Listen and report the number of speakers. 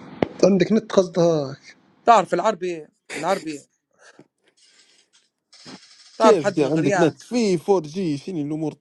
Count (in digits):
3